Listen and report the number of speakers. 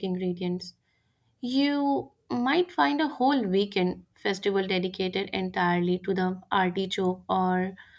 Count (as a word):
one